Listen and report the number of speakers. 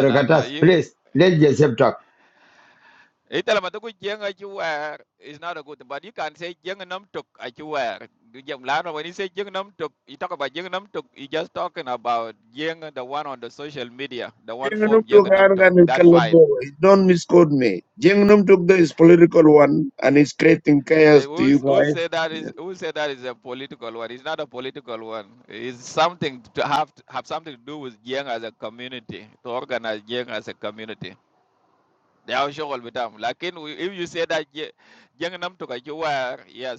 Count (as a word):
three